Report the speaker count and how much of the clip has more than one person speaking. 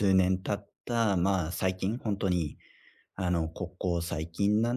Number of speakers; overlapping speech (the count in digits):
1, no overlap